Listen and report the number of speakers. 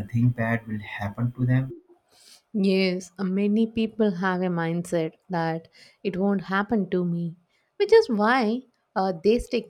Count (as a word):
two